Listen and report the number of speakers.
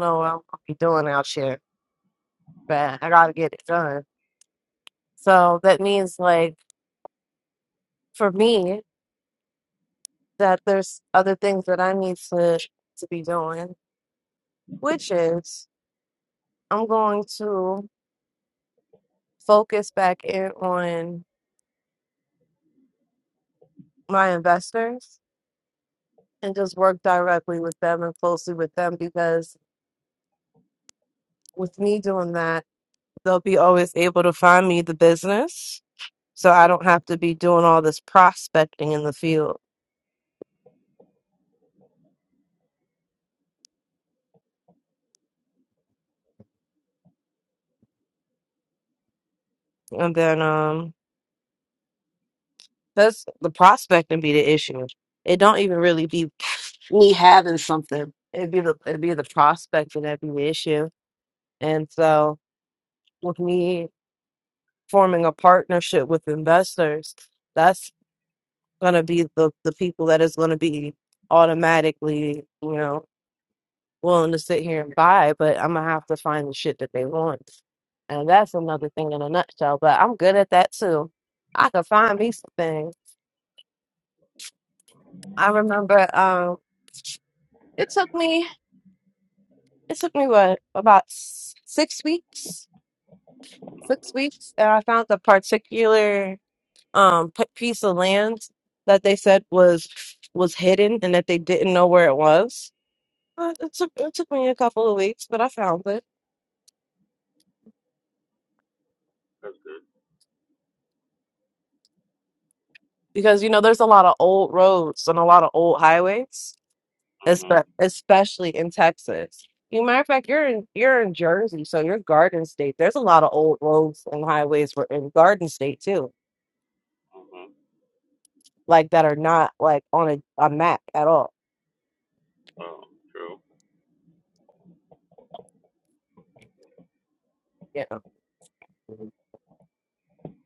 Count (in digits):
2